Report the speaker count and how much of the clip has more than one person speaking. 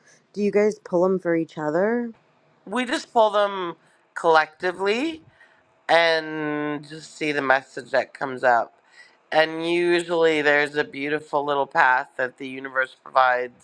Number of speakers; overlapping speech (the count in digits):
2, no overlap